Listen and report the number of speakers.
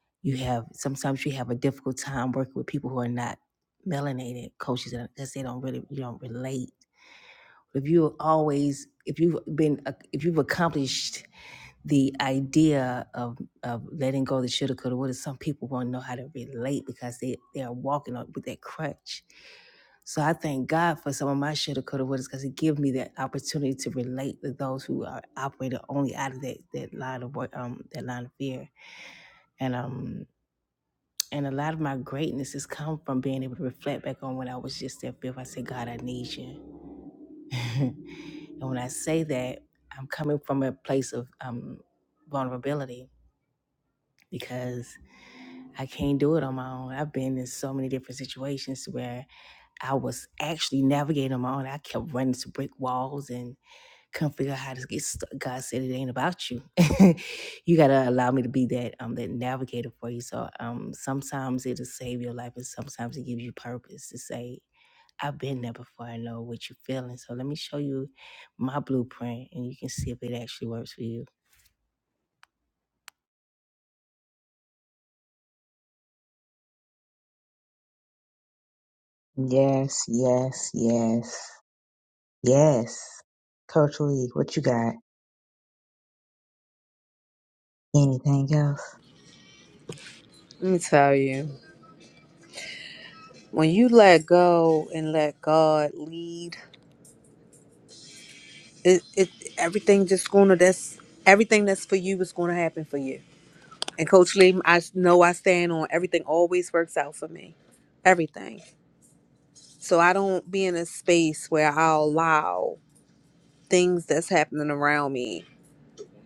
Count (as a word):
three